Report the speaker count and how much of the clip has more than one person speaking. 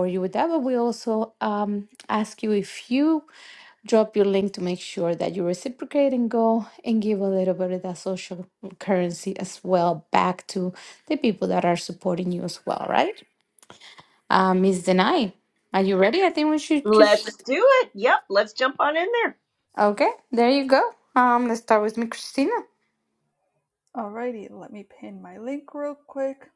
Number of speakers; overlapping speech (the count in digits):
3, about 2%